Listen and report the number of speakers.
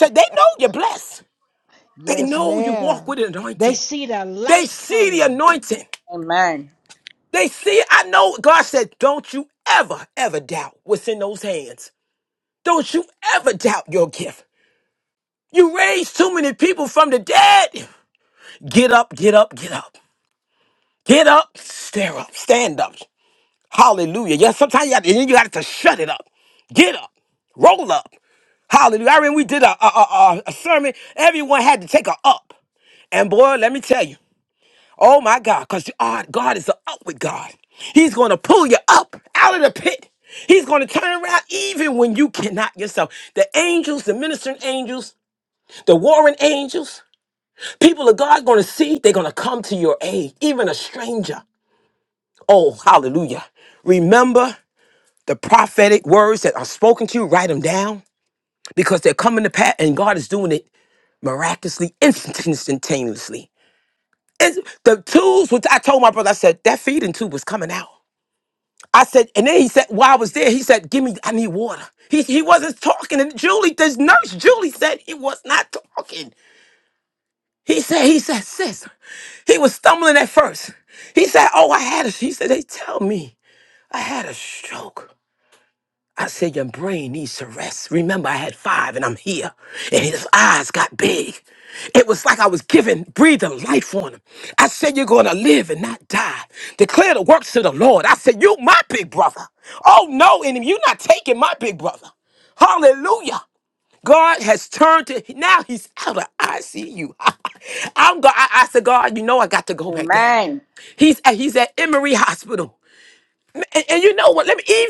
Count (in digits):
3